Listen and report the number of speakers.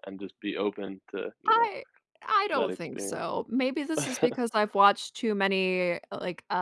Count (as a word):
two